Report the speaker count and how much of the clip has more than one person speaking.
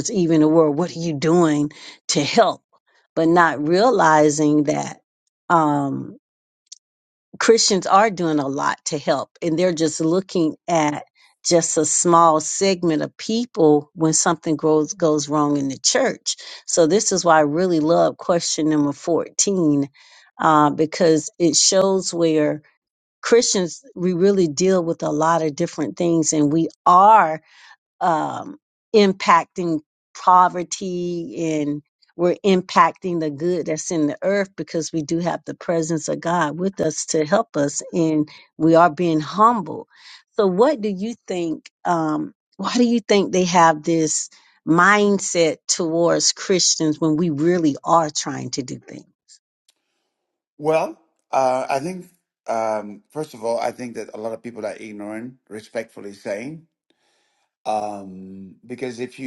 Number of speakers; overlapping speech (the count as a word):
two, no overlap